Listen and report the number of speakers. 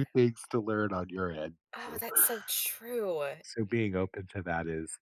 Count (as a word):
two